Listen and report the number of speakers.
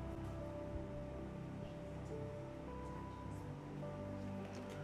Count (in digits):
0